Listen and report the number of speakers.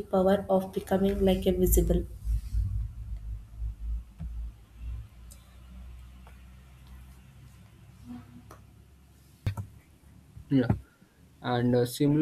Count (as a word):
two